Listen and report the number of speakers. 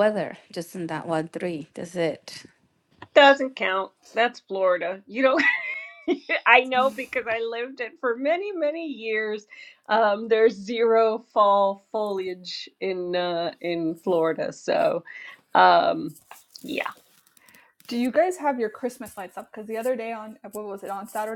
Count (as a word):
three